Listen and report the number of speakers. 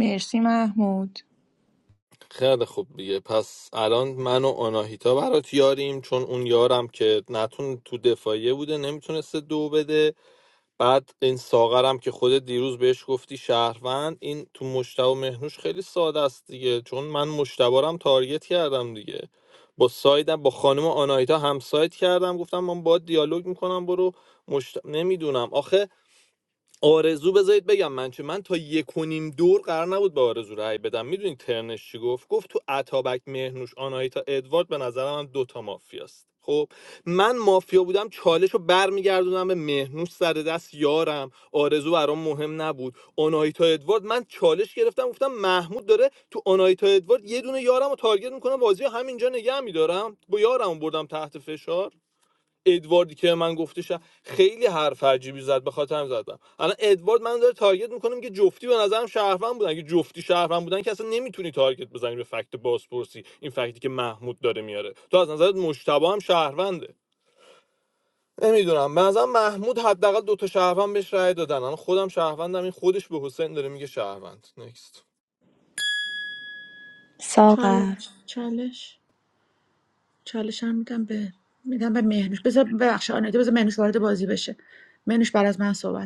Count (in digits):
3